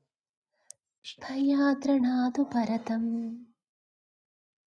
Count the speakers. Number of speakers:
1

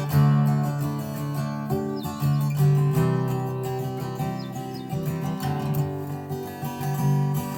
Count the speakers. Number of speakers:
0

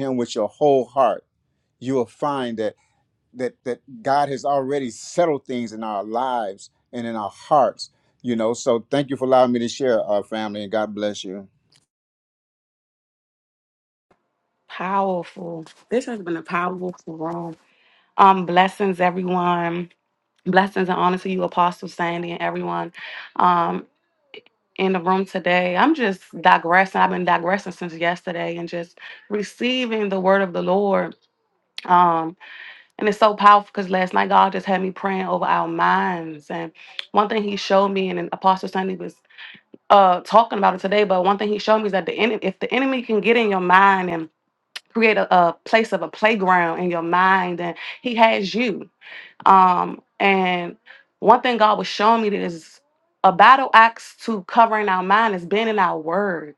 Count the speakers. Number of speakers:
2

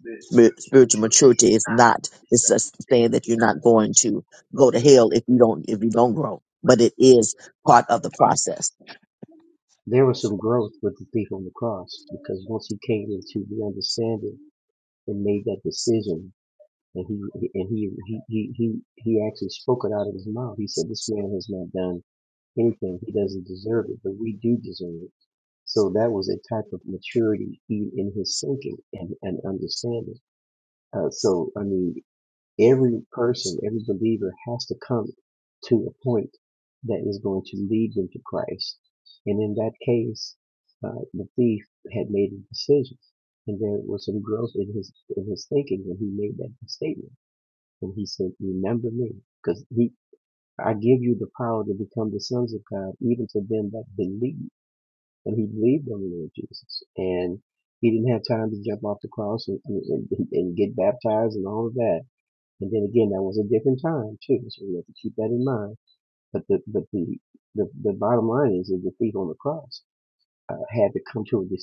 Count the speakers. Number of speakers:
2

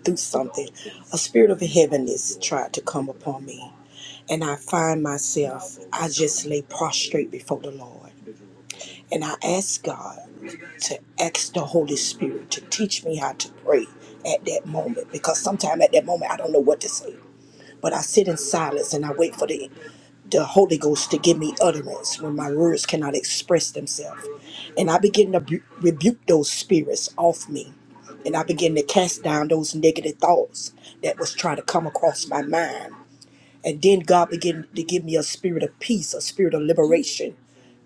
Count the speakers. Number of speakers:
1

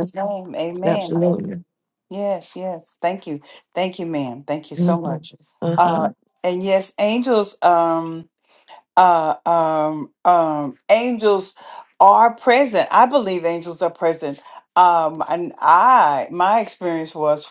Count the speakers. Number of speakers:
2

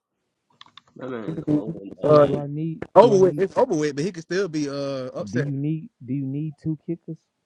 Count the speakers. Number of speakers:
3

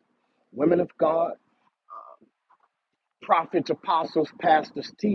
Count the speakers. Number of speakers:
1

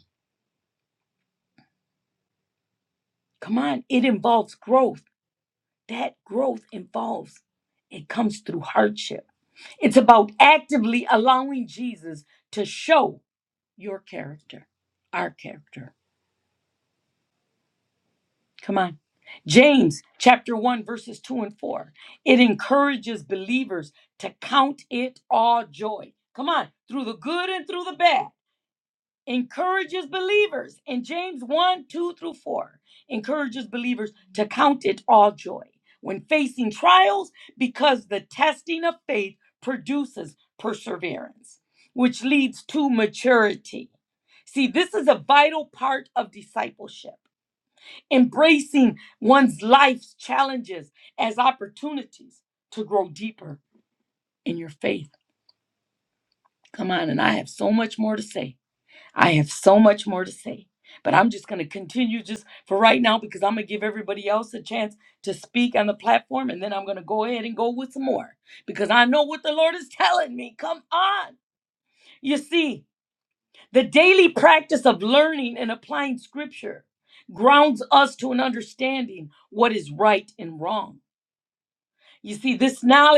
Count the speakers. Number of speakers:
1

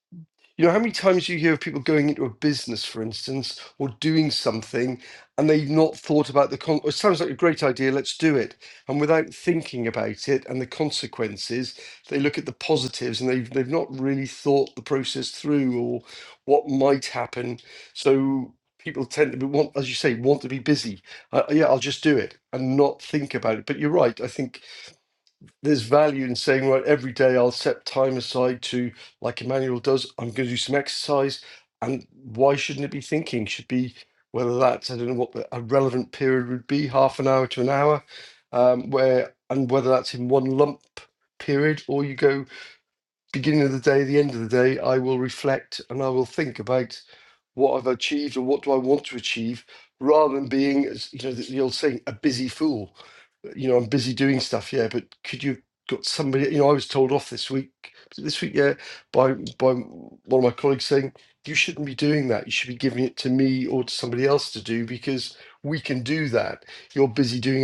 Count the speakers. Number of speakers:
1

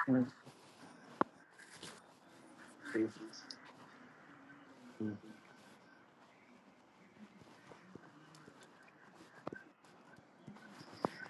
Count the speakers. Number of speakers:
0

